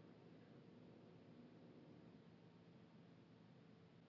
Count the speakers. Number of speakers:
0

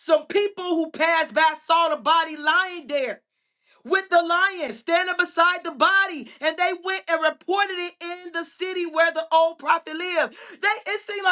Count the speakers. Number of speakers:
1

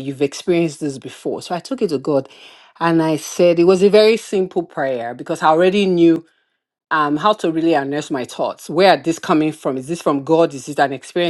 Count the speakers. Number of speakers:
1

